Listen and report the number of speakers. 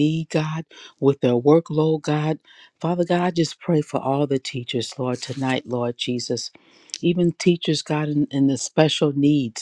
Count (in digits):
1